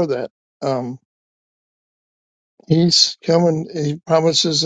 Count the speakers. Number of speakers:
1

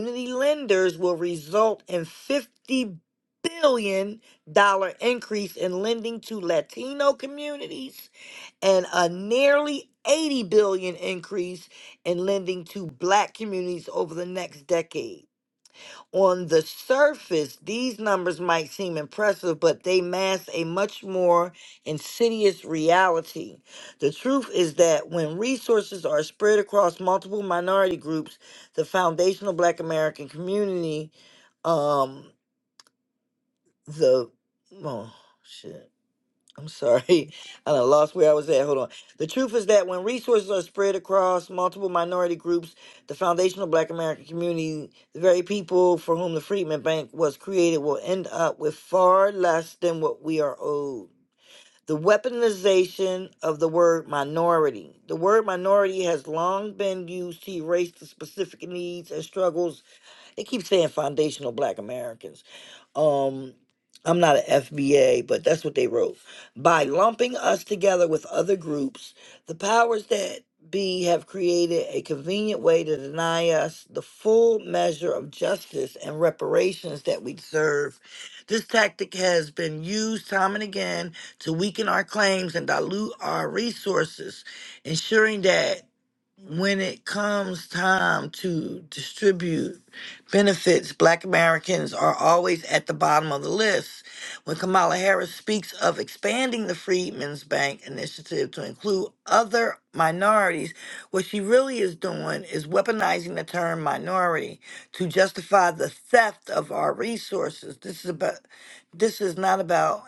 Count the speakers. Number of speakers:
1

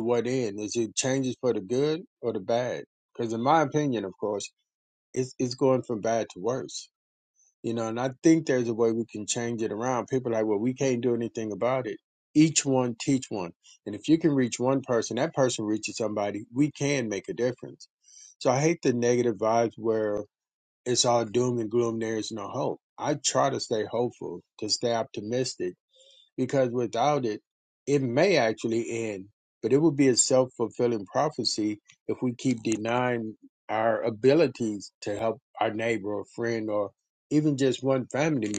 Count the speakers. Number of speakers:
1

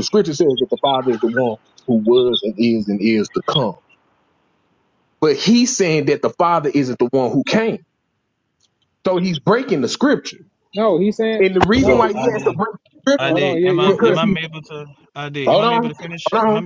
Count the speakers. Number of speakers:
3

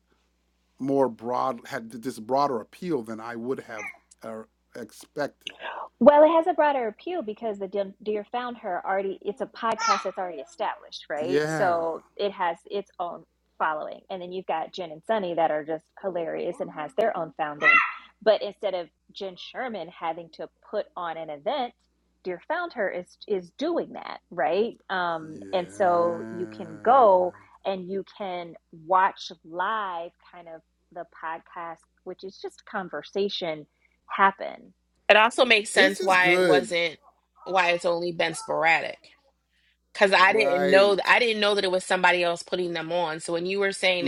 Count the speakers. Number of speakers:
3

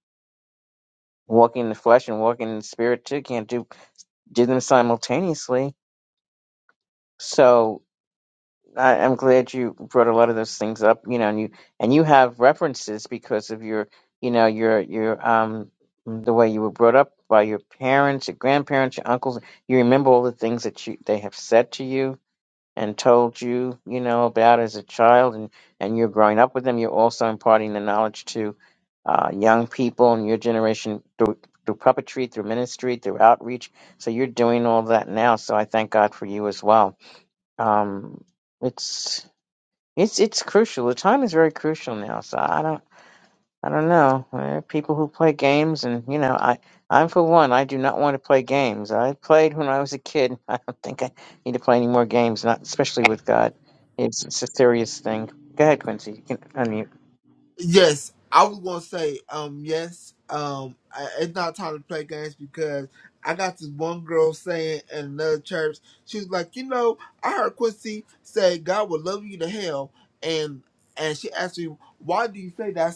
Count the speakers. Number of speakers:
2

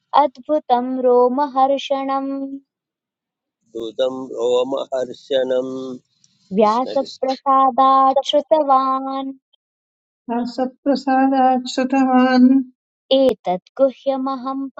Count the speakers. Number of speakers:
3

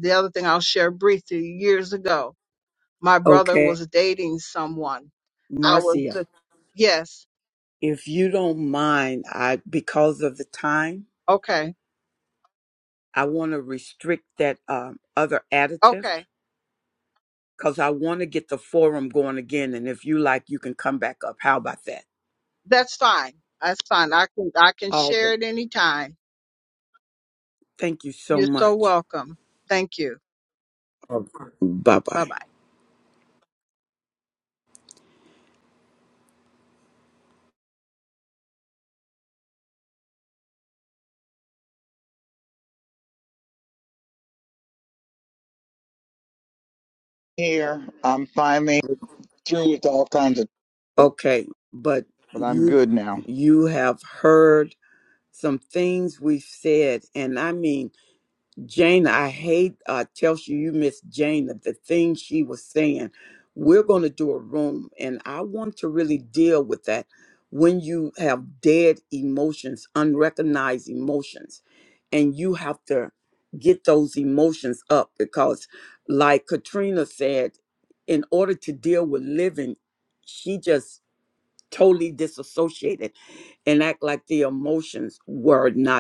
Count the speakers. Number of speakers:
3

